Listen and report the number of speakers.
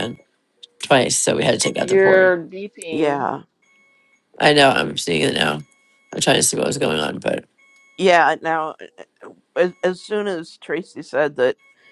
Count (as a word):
three